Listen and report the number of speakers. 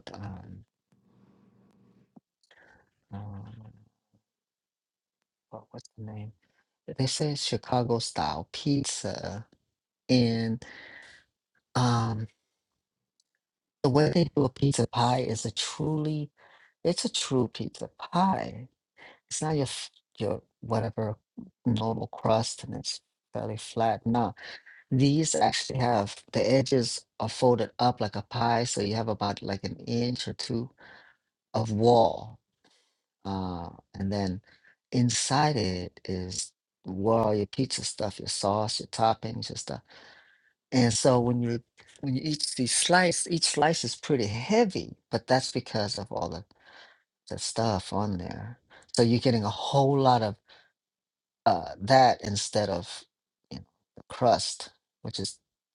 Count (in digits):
1